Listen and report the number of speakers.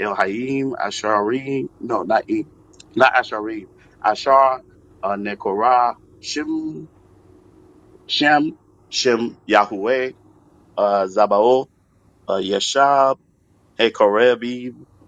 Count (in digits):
1